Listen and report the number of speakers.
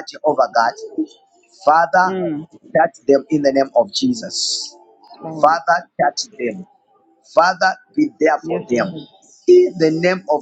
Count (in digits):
2